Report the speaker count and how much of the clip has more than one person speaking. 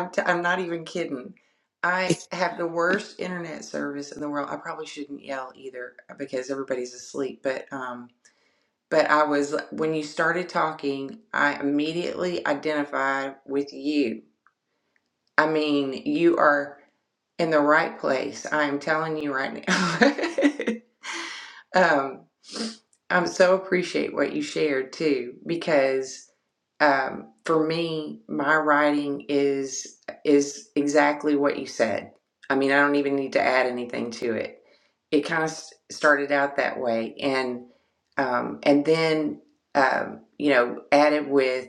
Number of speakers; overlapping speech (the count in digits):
1, no overlap